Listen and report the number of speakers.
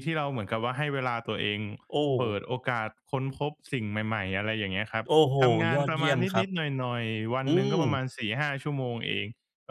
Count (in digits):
2